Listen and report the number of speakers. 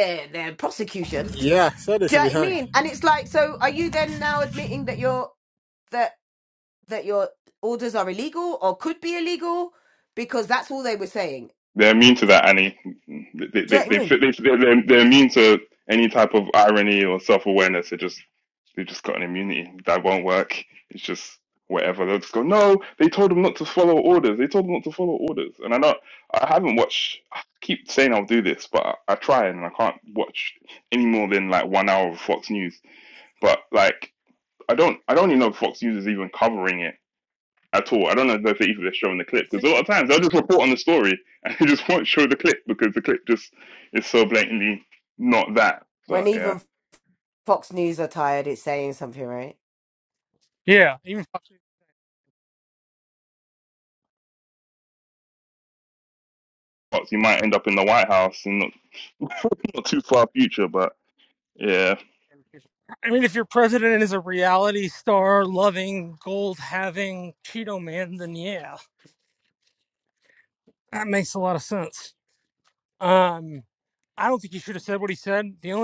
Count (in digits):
4